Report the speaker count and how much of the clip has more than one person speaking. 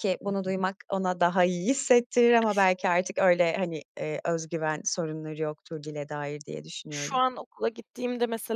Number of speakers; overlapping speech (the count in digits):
2, about 6%